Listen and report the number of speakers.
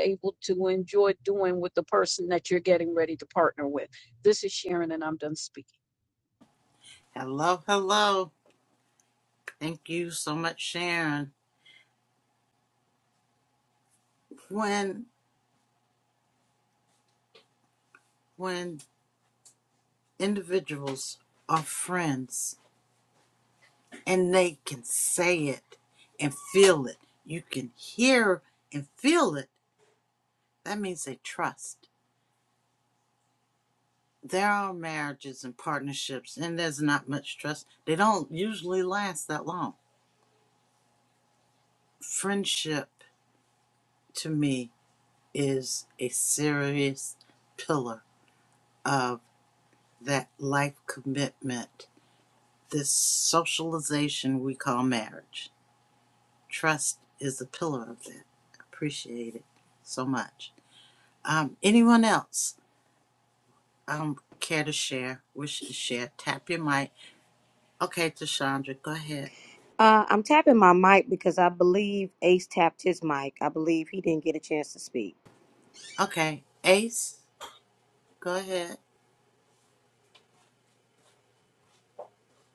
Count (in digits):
3